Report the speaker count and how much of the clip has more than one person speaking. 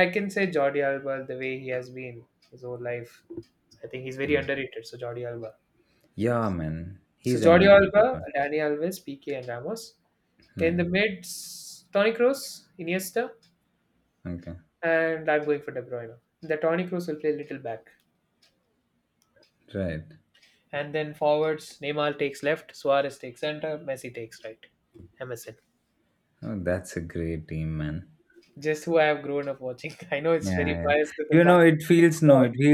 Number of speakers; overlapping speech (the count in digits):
2, about 7%